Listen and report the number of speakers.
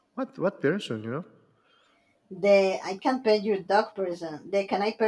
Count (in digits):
2